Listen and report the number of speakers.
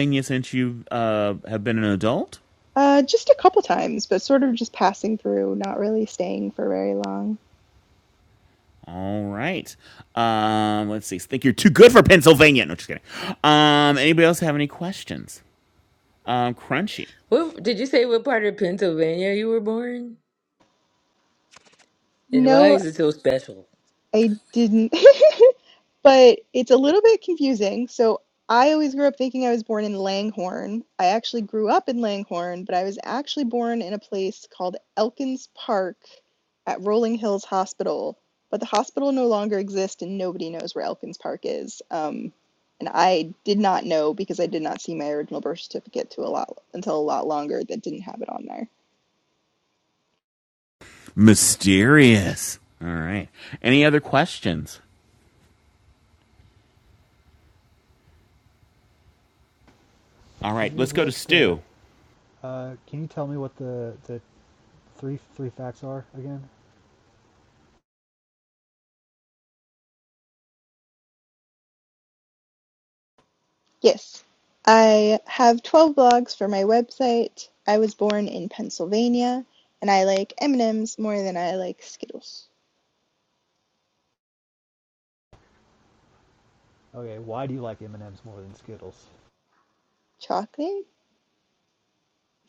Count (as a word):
four